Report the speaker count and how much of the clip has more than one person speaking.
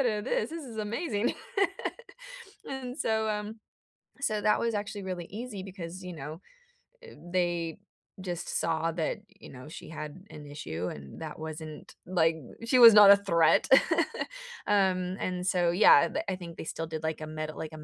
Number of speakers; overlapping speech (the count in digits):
1, no overlap